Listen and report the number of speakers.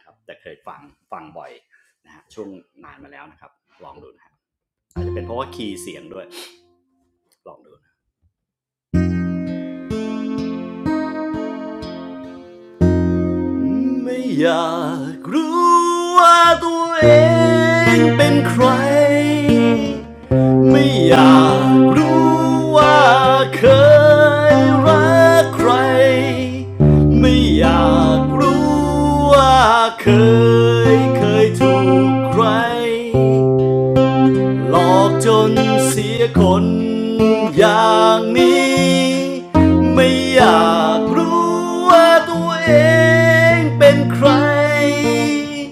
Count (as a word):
one